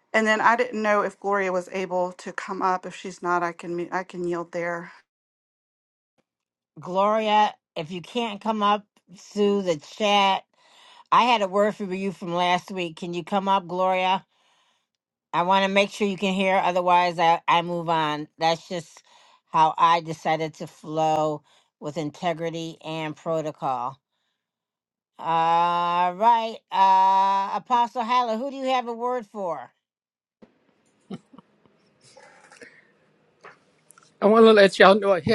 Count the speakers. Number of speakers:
3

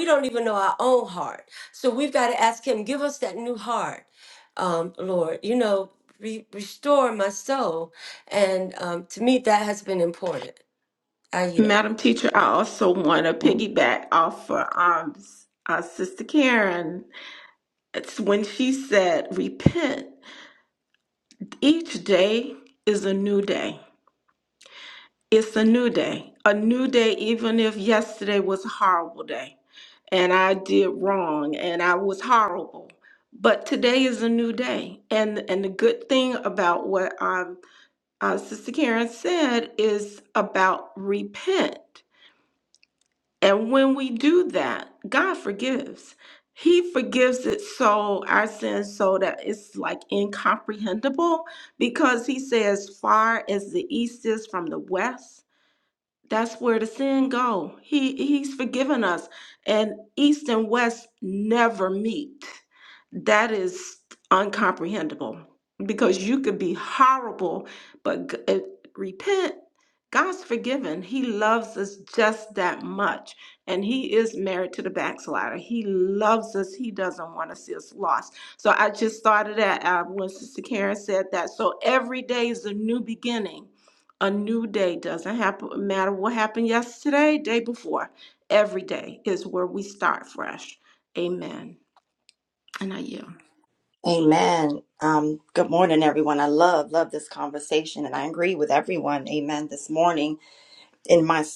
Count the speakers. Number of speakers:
3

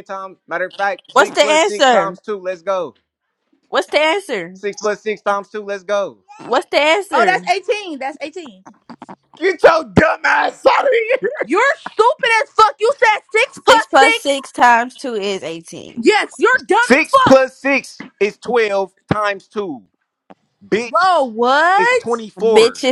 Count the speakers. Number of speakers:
3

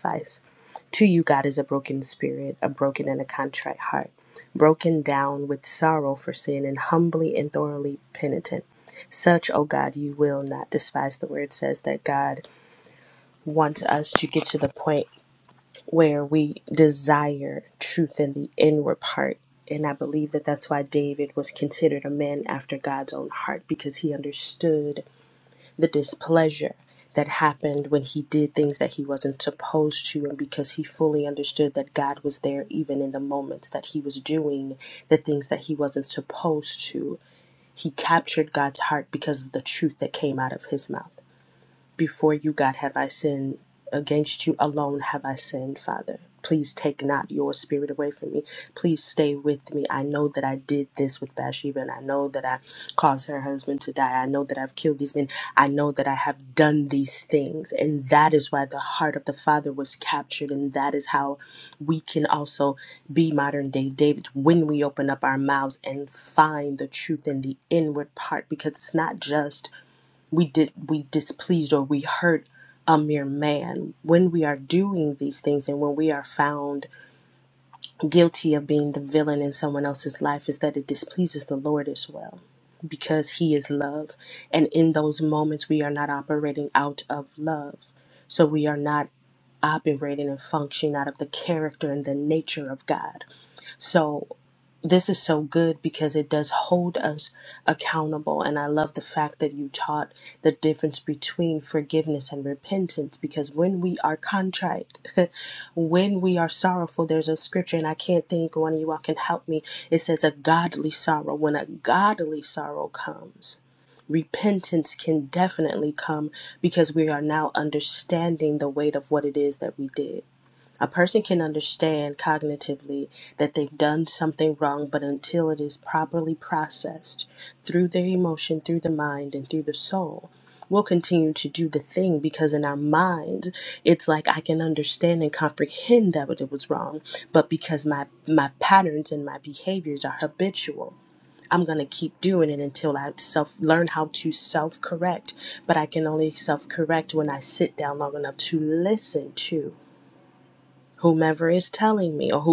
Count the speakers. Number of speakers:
1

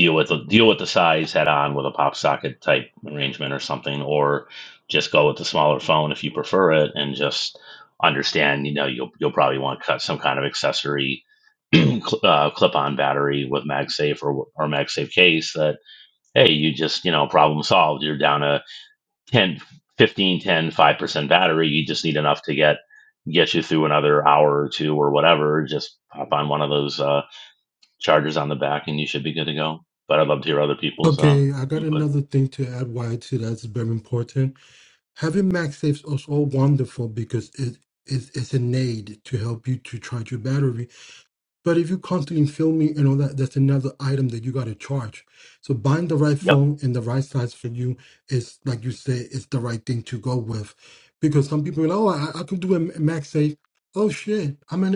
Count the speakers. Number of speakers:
2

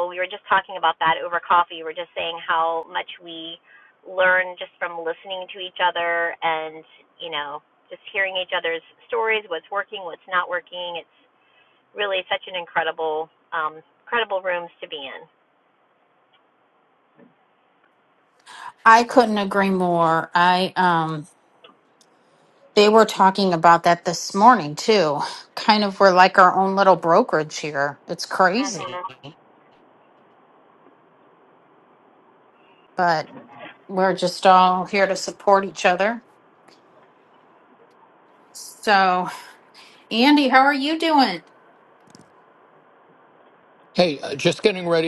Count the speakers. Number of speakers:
3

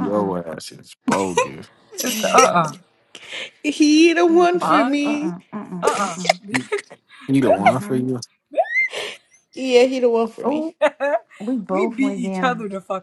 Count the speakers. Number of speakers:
4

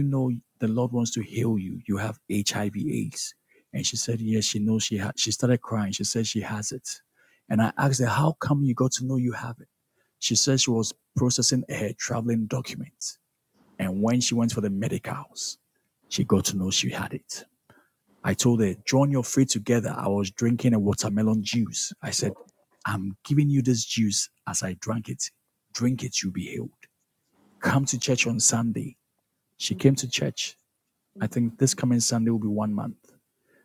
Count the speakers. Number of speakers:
1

